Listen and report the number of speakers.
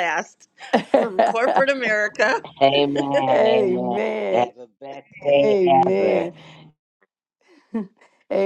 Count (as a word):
three